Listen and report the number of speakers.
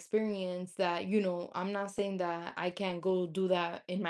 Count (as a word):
one